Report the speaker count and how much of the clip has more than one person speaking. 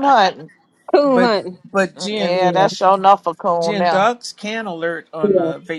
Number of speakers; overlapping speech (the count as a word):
three, about 29%